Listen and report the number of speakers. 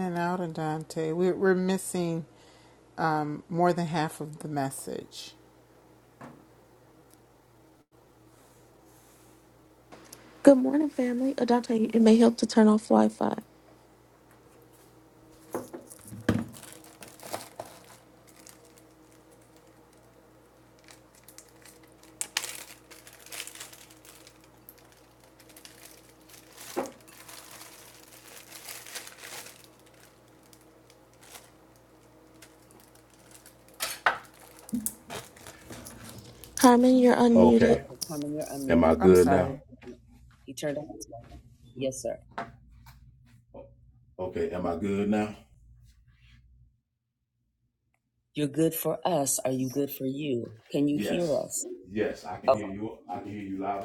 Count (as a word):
four